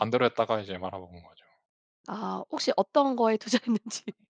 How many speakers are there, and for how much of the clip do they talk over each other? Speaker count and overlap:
2, no overlap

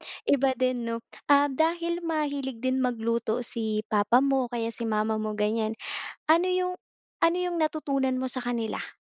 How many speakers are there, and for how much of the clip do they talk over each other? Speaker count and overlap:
1, no overlap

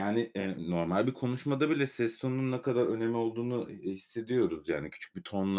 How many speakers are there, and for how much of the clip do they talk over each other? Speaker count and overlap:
1, no overlap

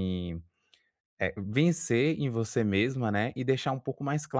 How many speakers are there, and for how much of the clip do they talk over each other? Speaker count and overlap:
1, no overlap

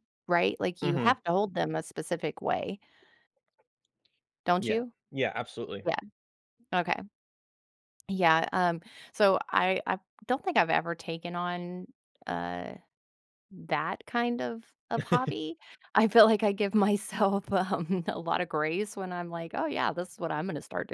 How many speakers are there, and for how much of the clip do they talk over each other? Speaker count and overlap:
2, about 3%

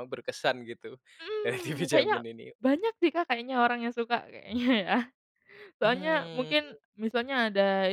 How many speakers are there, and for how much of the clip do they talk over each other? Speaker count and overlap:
2, about 22%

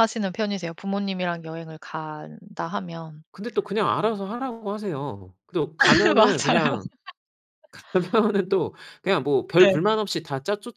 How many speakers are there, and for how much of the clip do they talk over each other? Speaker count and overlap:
2, about 7%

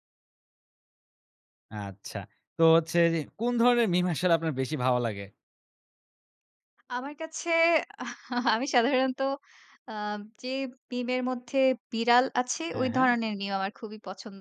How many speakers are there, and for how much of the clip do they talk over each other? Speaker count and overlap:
2, about 3%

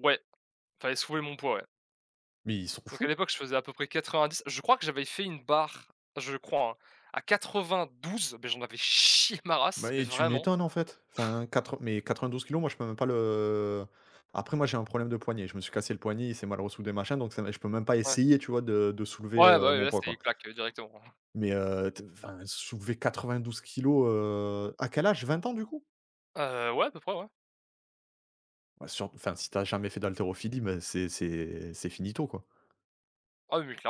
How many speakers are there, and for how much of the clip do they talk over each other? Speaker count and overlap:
2, about 5%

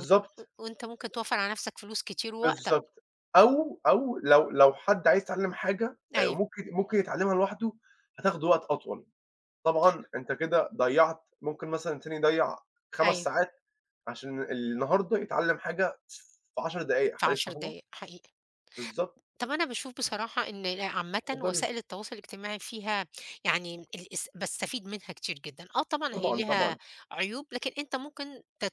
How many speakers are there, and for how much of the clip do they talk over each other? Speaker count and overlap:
2, about 8%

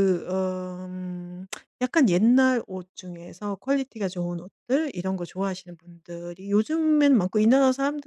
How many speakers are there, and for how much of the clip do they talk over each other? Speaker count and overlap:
1, no overlap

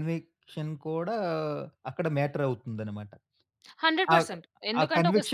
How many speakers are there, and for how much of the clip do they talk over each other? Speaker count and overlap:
2, about 15%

